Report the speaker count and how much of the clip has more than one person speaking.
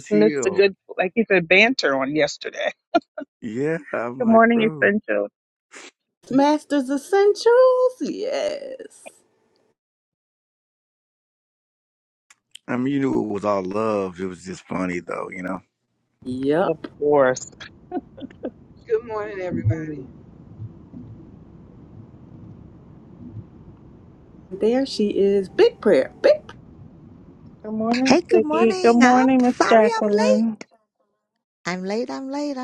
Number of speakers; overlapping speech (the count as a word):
five, about 13%